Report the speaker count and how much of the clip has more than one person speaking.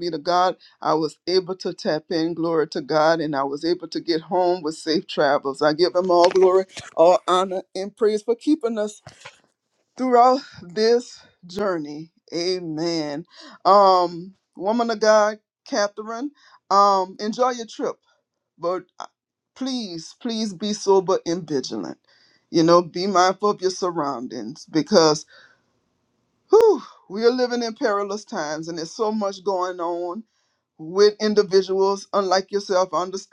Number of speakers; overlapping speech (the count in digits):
1, no overlap